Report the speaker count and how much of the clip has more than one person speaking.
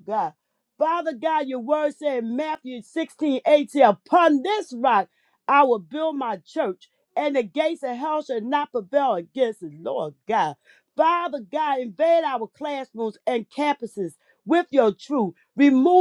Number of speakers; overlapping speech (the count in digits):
1, no overlap